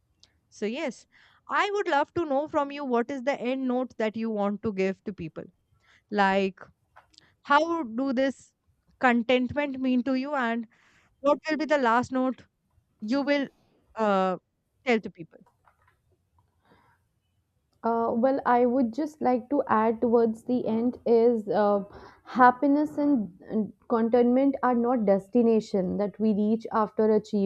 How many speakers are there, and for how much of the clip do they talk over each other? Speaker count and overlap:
2, no overlap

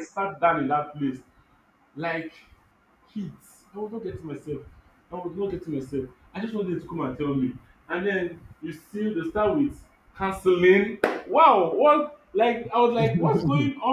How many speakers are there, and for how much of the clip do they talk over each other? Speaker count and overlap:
1, no overlap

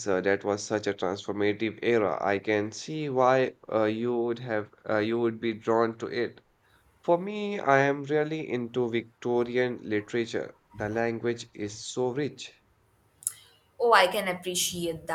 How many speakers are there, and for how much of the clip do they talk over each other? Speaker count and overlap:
2, no overlap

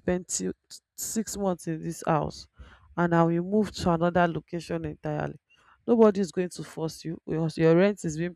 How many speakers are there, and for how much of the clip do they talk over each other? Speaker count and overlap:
1, no overlap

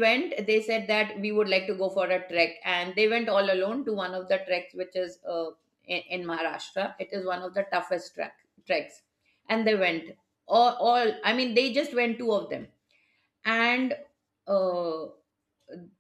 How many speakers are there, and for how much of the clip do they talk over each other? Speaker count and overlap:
1, no overlap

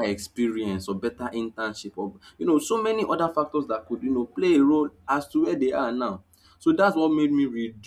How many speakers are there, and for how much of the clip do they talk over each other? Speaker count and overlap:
1, no overlap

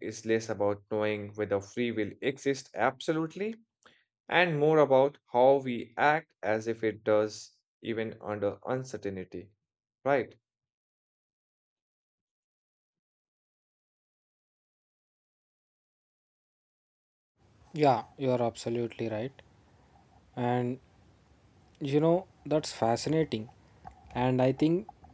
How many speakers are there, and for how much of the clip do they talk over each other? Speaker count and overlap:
2, no overlap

